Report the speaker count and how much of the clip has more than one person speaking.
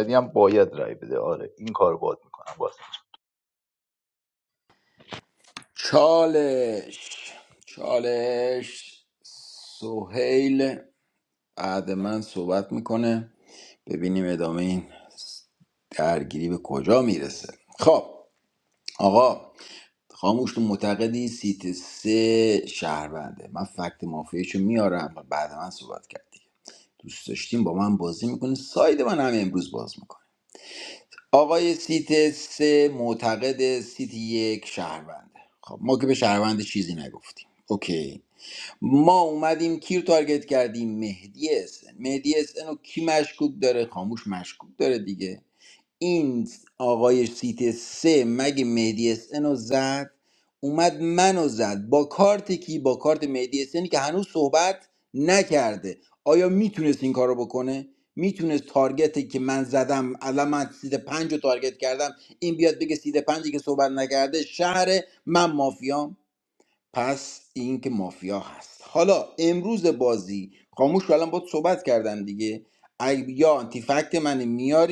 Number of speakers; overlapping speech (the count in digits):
2, no overlap